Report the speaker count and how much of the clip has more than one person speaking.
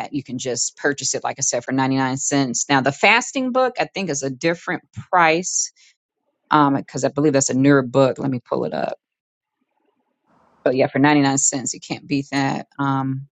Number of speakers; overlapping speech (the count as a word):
one, no overlap